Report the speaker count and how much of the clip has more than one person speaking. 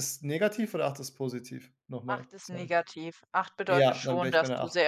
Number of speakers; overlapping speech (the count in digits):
2, about 33%